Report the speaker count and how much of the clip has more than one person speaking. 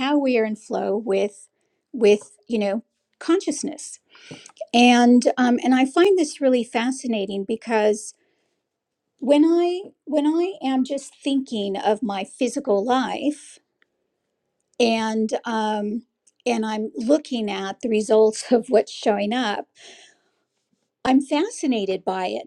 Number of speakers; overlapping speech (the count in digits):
1, no overlap